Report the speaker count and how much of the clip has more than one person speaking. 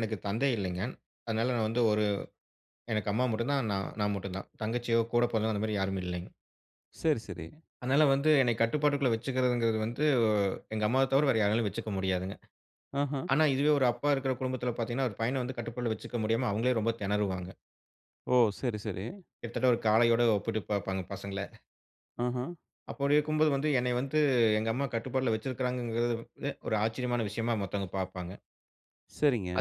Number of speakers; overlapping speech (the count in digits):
2, under 1%